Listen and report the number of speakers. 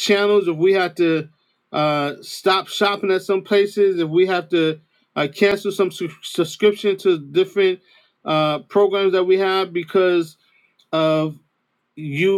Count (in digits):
1